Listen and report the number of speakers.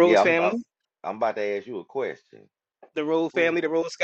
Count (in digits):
2